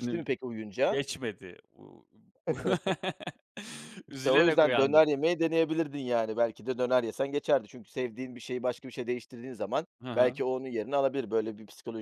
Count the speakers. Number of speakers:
2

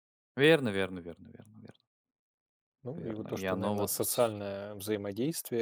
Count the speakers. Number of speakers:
2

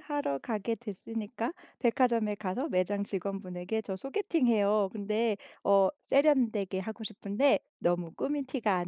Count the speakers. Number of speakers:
1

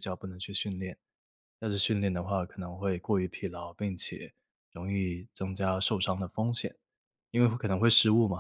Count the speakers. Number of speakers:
1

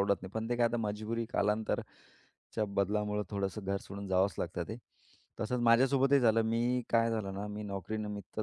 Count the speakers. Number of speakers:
1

